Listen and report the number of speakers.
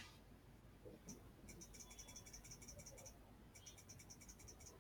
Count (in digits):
0